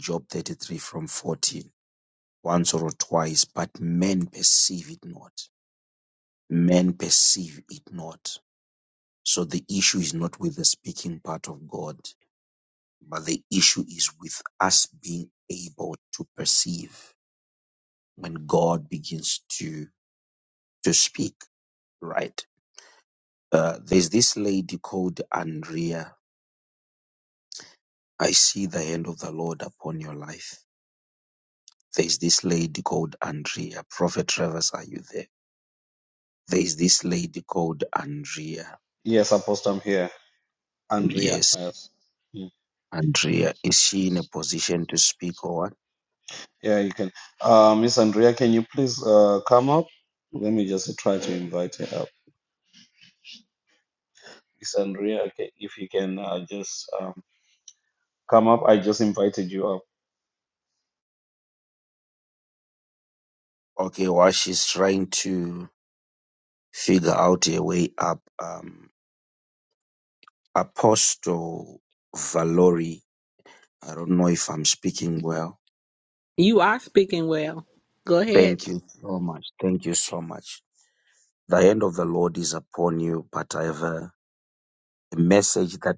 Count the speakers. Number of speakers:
3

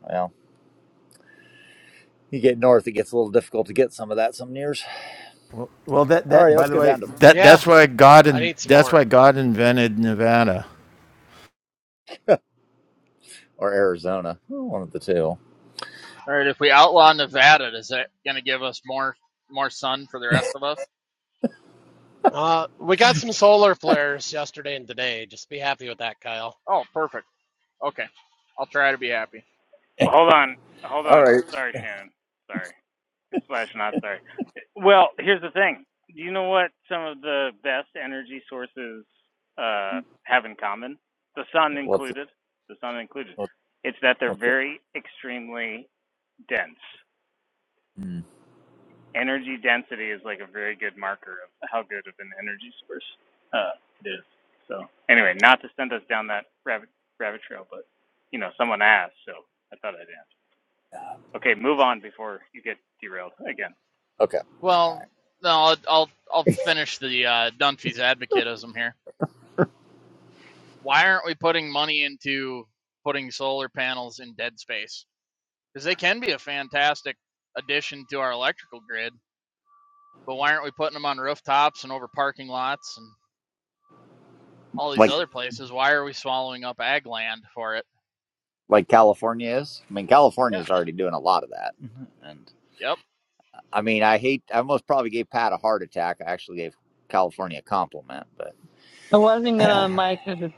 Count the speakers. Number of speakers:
6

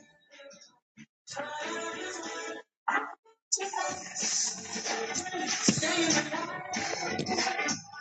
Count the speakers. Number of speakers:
0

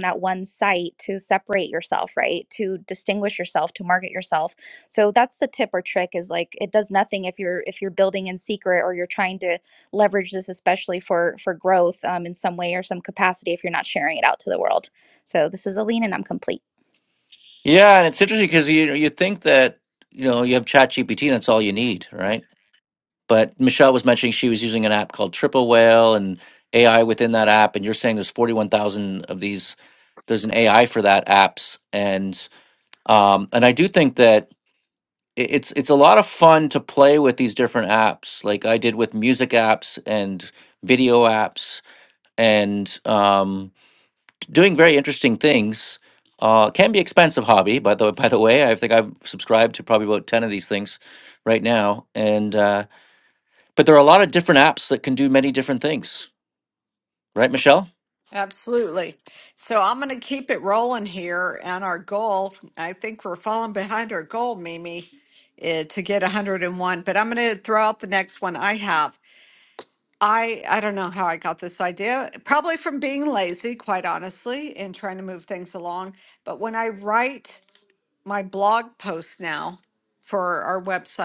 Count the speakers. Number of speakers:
3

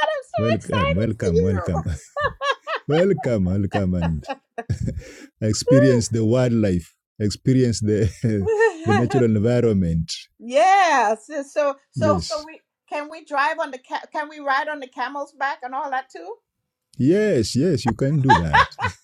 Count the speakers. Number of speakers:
2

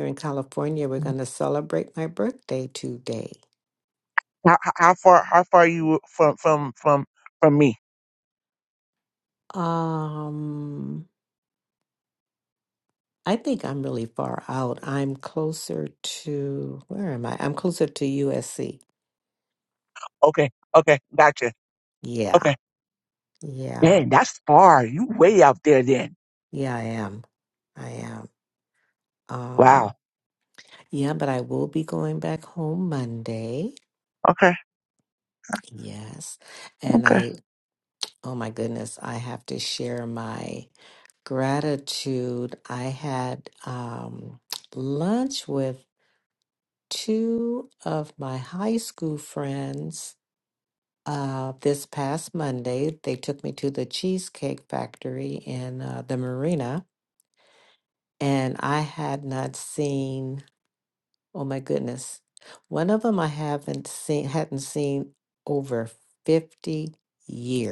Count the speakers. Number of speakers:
2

